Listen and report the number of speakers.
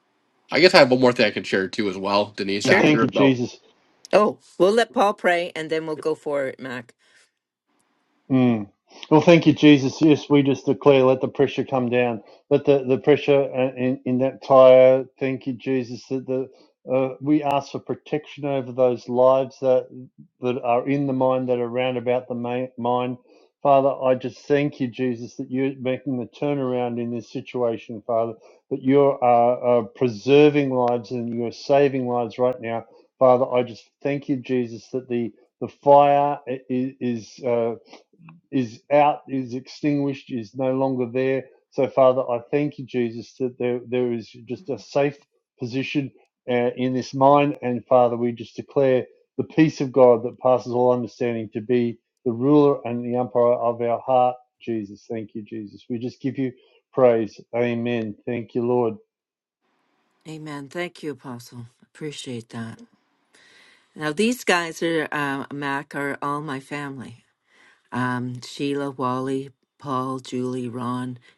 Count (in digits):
3